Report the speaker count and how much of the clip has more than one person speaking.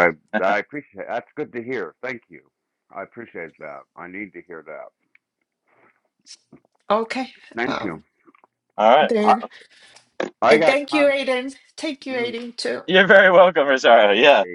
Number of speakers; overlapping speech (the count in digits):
3, about 13%